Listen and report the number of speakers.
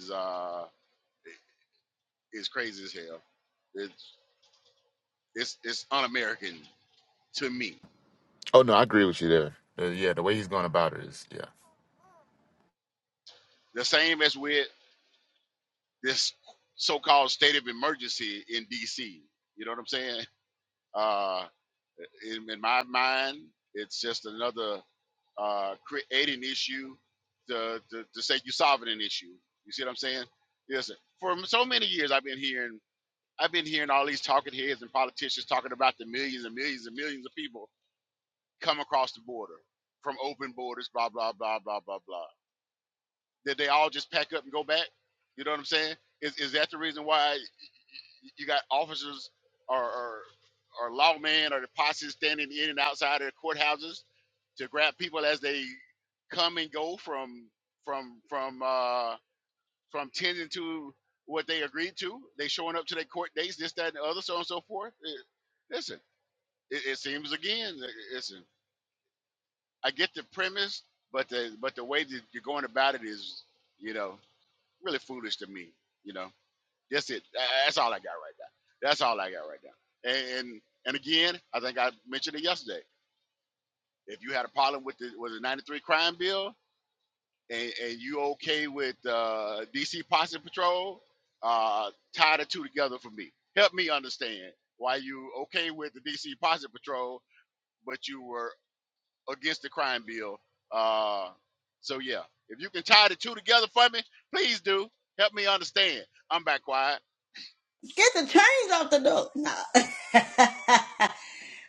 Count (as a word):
three